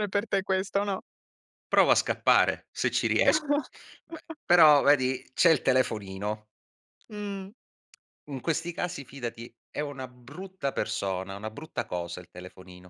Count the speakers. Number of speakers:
2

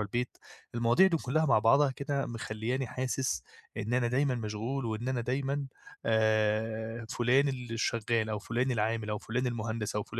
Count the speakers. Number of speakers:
1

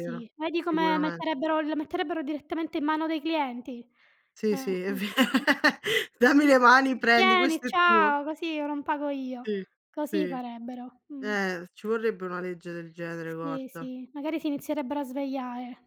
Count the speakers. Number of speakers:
2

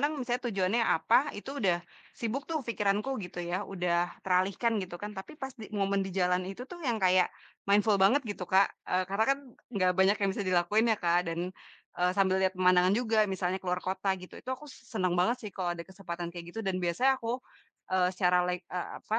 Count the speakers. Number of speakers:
1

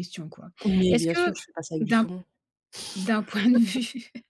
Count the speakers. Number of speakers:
2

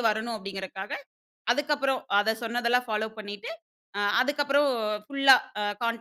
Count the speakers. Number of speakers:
1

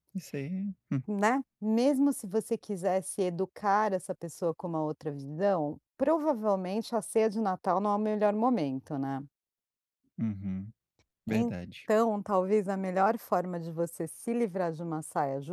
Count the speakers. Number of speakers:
2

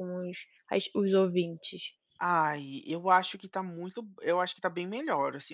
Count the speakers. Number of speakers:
2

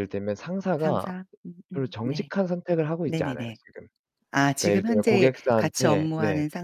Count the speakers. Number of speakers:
2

